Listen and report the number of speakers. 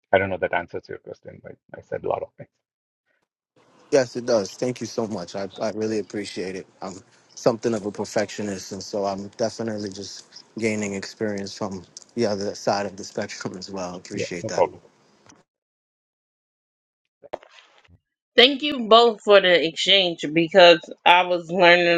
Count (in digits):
3